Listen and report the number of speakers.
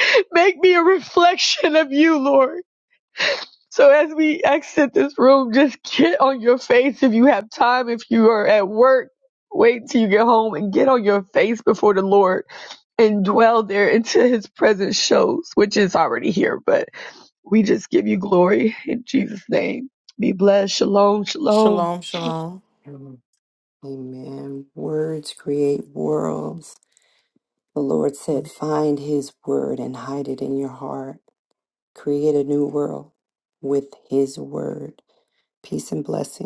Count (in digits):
3